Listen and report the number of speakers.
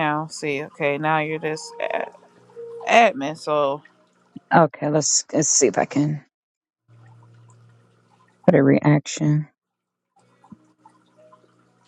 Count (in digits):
2